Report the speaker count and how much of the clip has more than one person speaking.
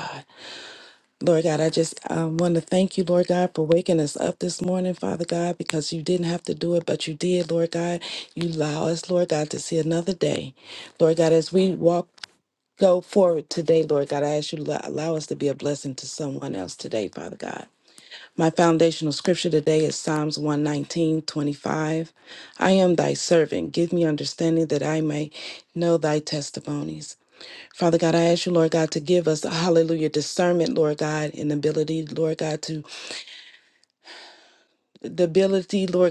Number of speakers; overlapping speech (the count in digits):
1, no overlap